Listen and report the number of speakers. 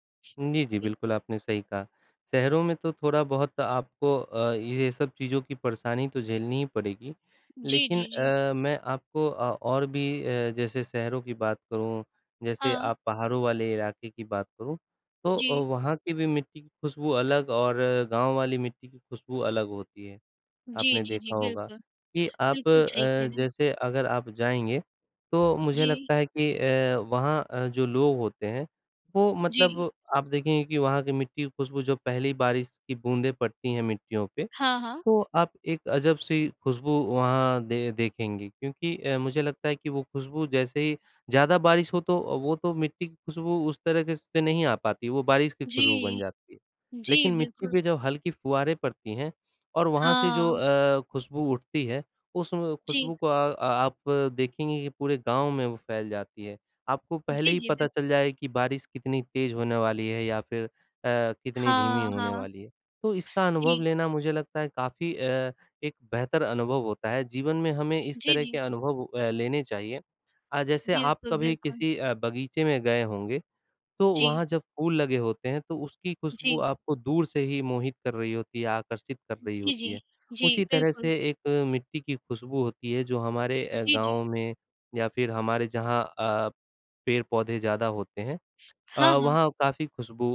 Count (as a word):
two